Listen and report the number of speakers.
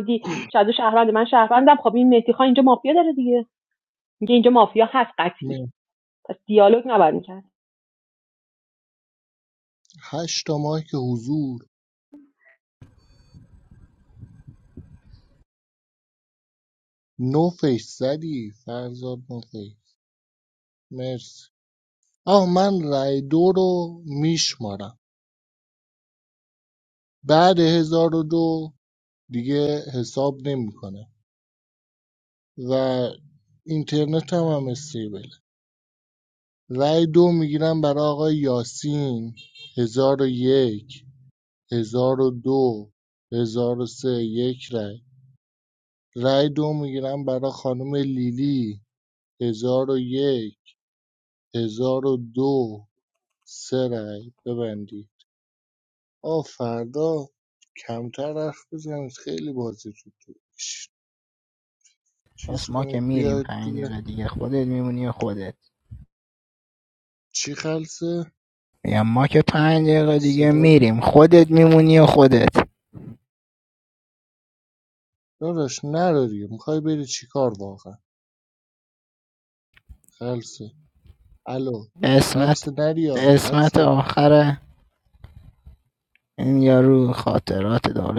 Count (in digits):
3